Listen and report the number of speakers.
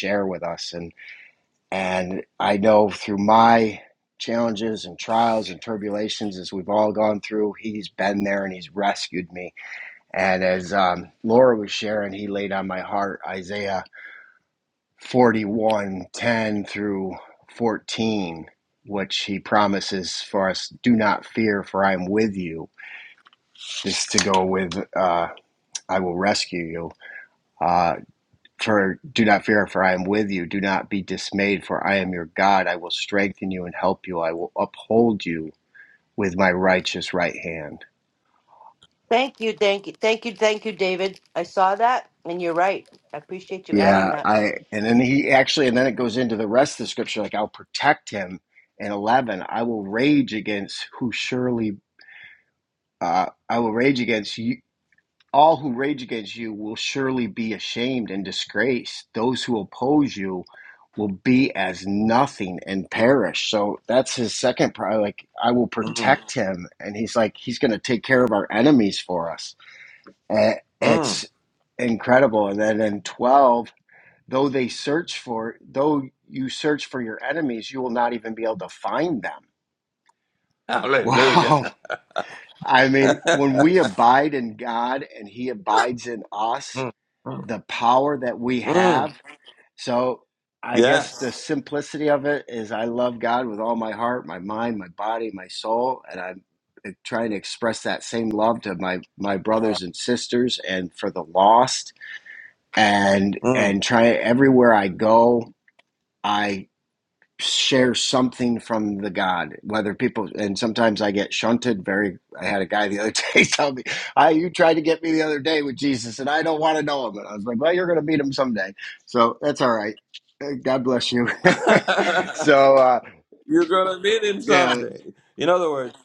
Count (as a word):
three